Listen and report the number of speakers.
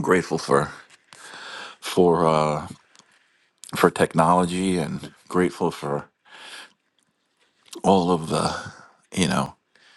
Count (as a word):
one